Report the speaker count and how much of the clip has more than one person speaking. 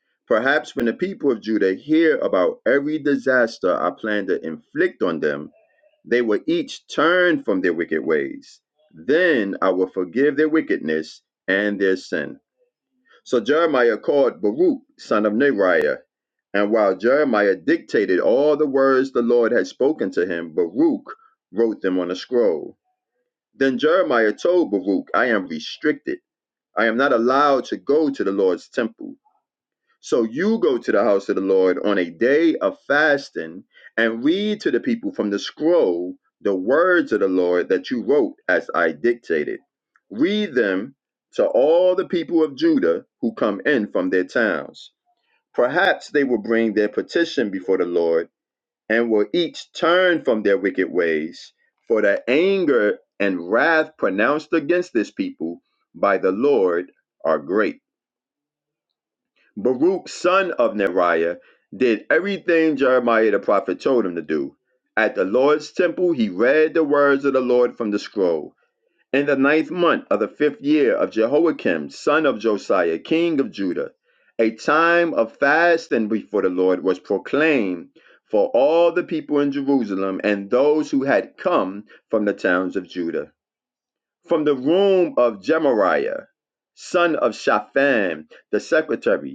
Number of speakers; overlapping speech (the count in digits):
1, no overlap